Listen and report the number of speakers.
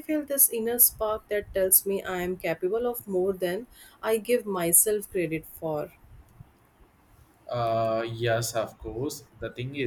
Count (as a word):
two